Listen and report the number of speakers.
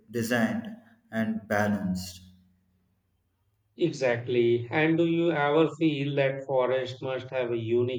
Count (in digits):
2